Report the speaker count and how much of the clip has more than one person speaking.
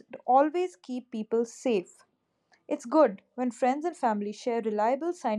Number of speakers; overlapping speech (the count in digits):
1, no overlap